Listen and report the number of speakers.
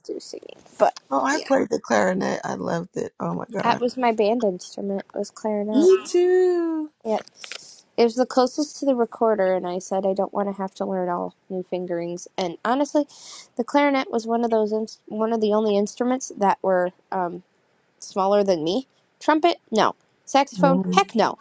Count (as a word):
two